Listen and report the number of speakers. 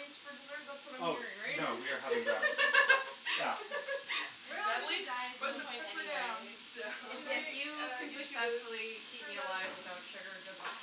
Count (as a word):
four